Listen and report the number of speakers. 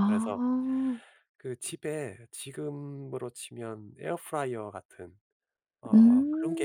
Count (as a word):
two